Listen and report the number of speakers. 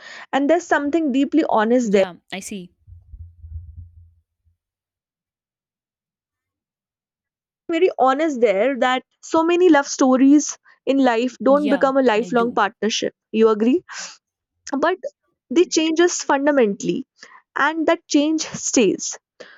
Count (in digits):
2